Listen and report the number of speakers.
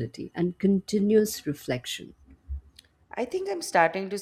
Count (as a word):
two